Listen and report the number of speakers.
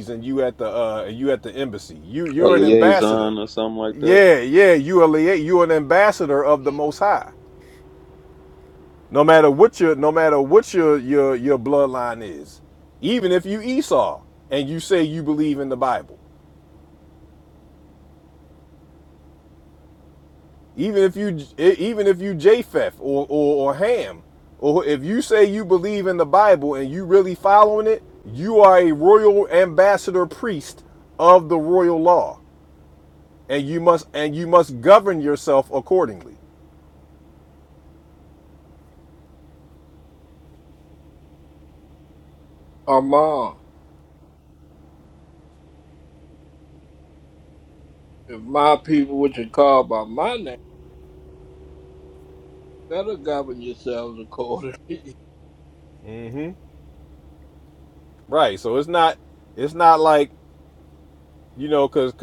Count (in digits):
3